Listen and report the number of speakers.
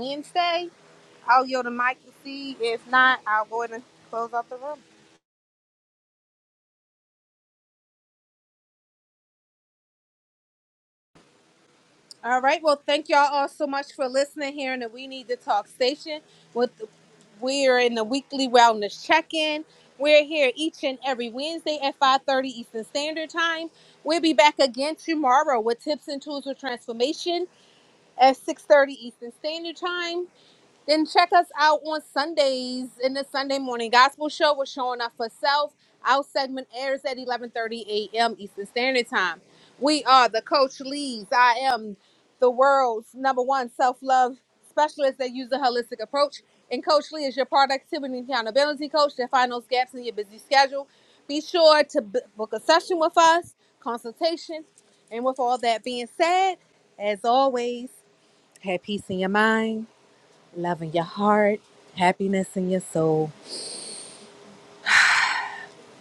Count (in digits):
1